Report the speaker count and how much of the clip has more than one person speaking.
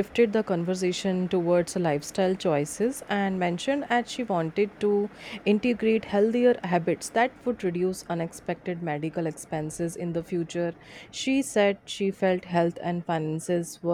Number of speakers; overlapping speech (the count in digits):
1, no overlap